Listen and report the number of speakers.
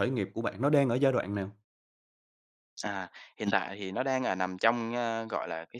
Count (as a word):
two